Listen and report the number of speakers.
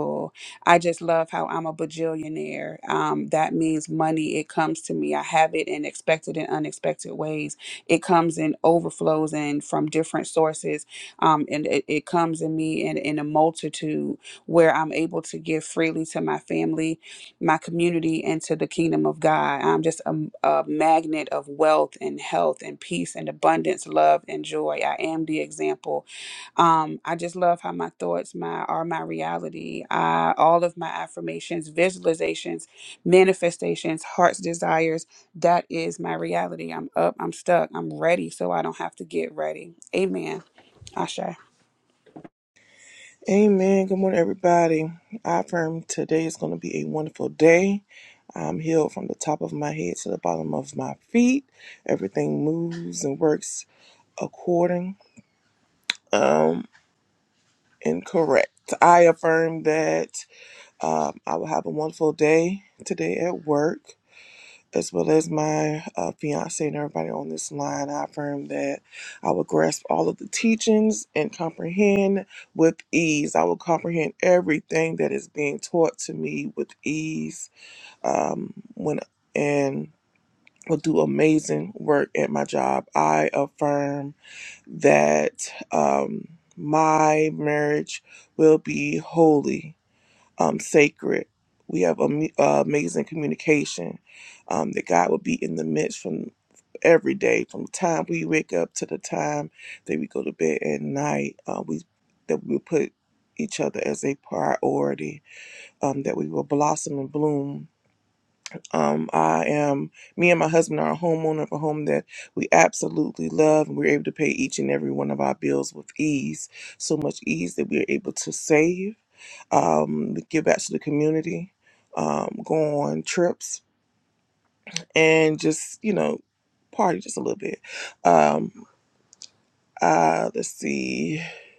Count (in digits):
2